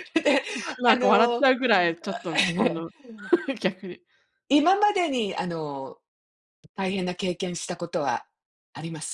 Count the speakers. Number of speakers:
two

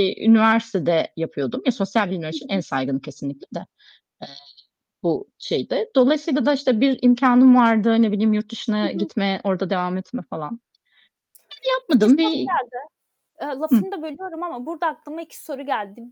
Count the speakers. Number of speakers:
two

